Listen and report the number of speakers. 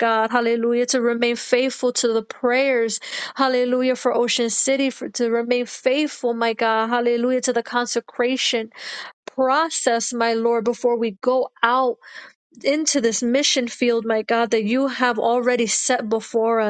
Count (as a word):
one